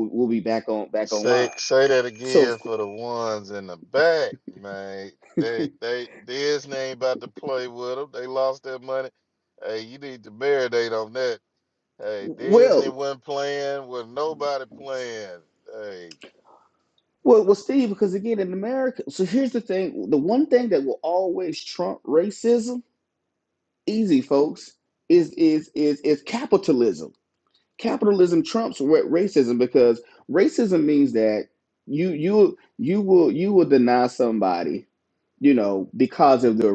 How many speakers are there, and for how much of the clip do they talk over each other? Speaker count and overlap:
two, about 4%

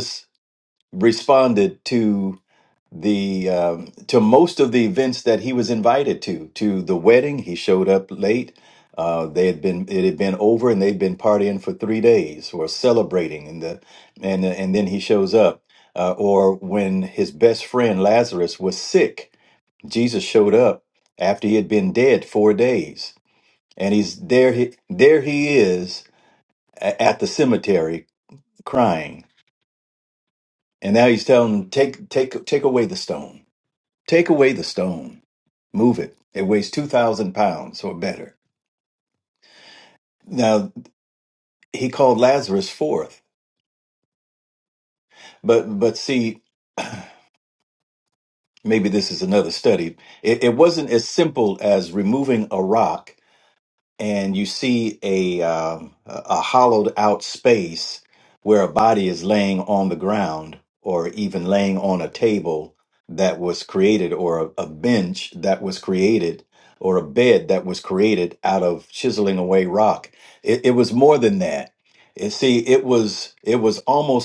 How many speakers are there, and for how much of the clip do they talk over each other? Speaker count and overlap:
one, no overlap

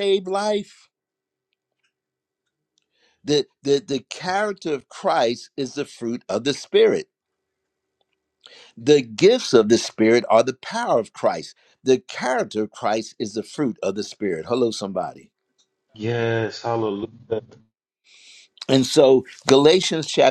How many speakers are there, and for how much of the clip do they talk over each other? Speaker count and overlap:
two, no overlap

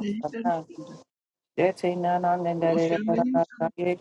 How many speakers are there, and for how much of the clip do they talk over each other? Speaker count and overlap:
two, about 27%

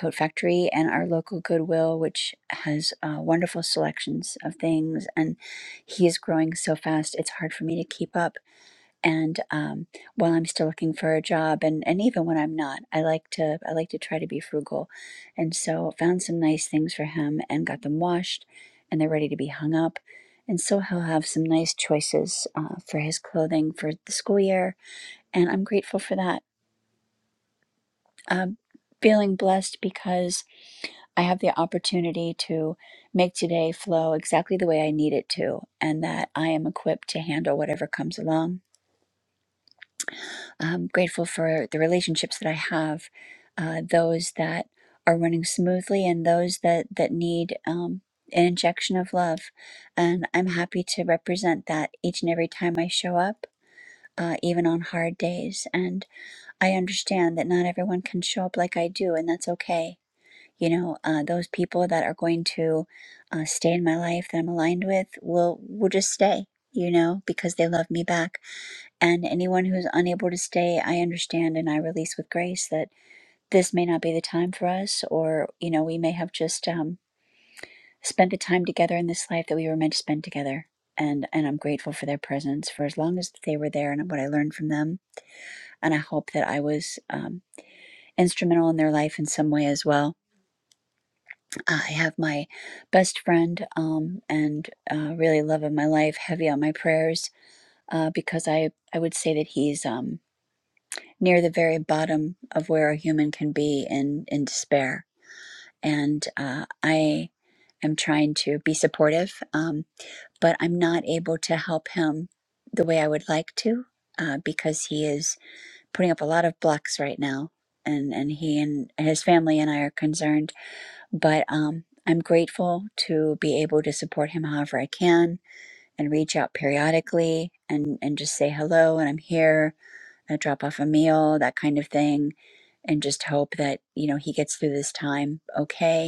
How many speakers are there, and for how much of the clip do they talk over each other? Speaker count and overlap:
one, no overlap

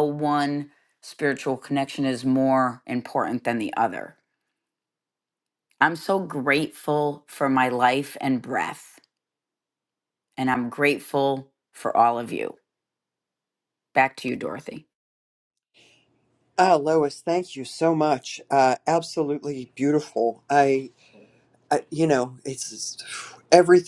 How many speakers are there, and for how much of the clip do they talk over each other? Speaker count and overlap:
two, no overlap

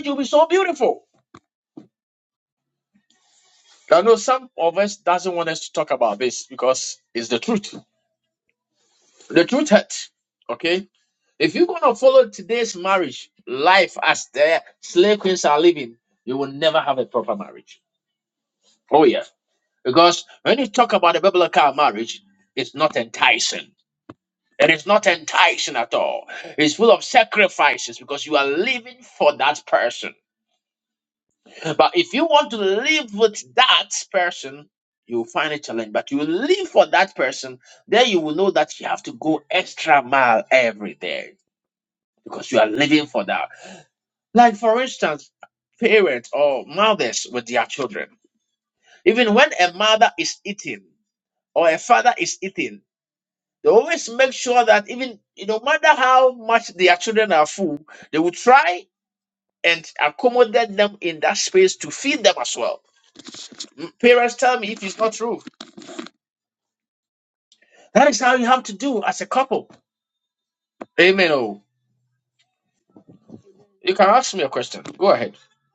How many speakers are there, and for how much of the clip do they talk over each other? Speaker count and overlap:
one, no overlap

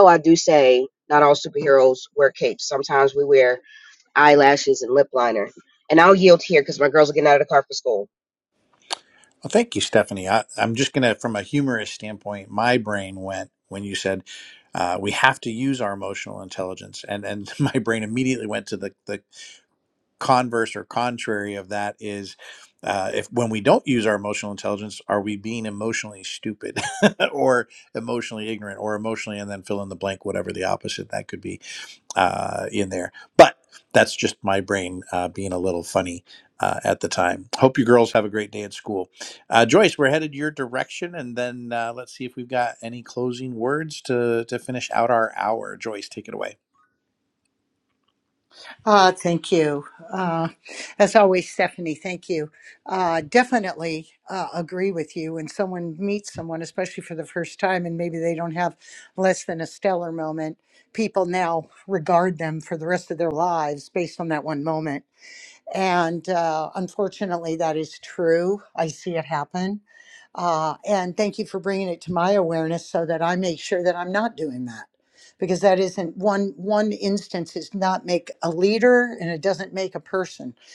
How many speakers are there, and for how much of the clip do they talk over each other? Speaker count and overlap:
three, no overlap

